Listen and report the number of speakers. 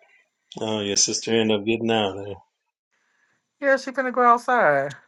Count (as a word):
two